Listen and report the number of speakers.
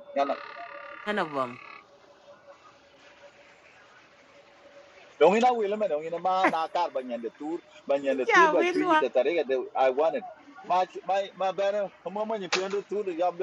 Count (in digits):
2